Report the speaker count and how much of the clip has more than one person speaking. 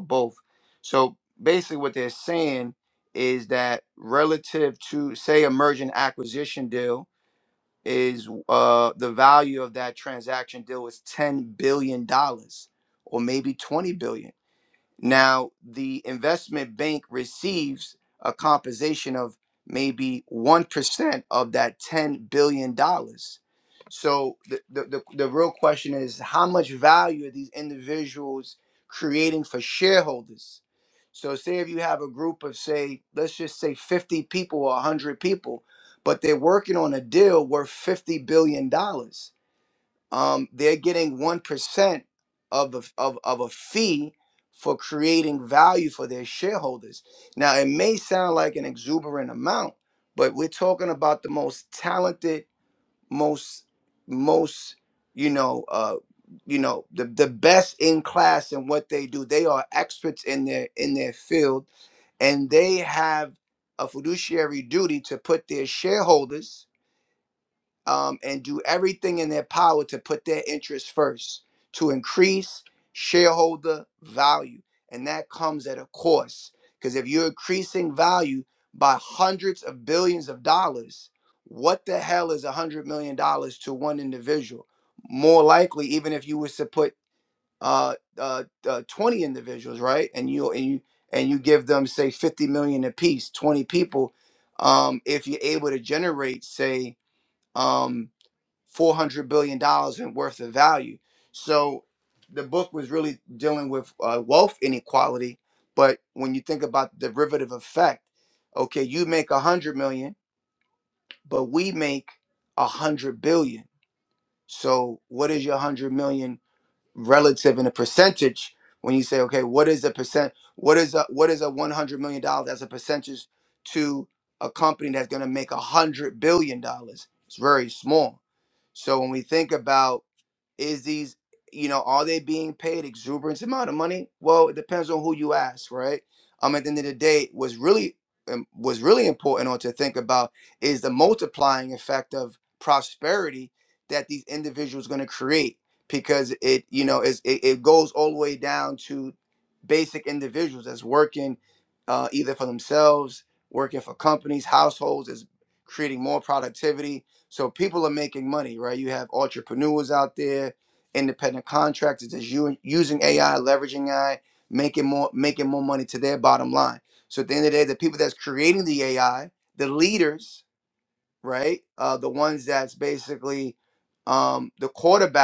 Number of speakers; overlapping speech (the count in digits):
1, no overlap